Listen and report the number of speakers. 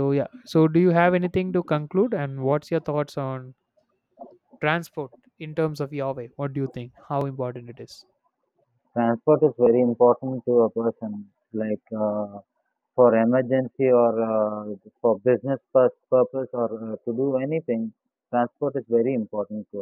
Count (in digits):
2